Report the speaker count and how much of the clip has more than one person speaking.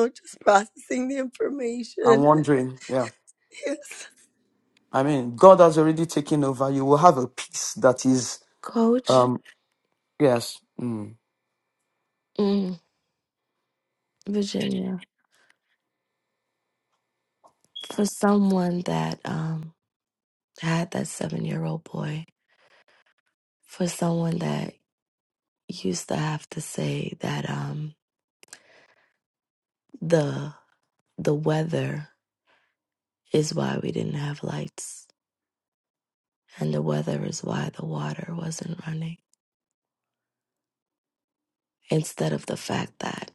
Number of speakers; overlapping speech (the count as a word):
three, about 1%